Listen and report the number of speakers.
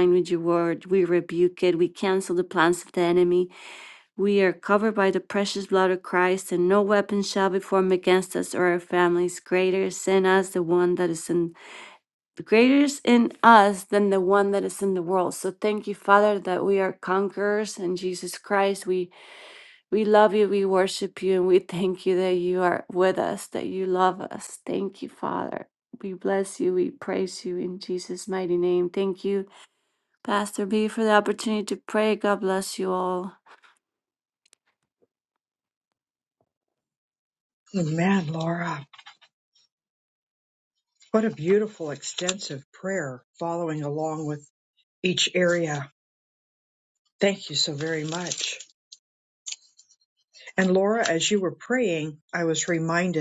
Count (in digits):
2